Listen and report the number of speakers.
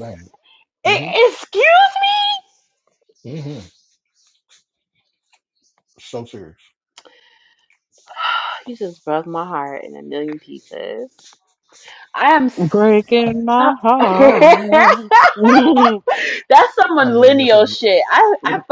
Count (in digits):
3